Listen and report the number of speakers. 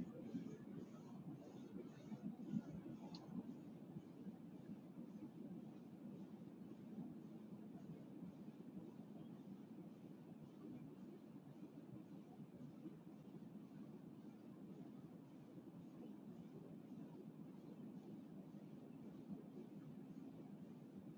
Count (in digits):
0